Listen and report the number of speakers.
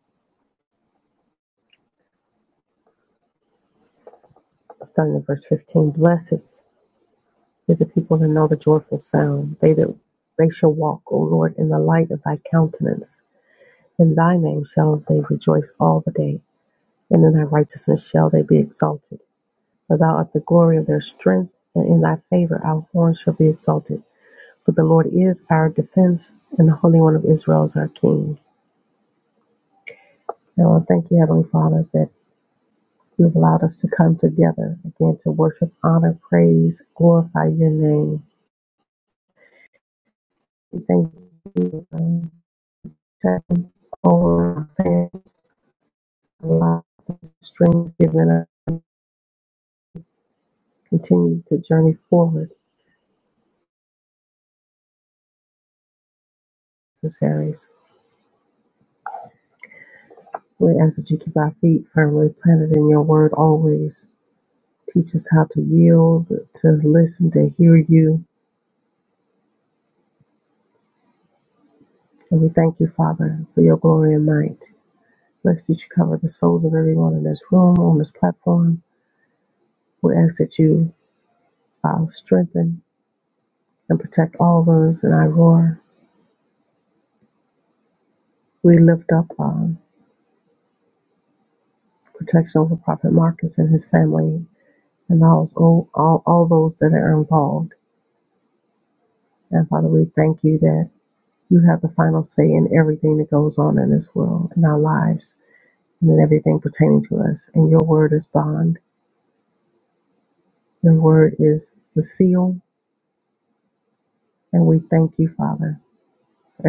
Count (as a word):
one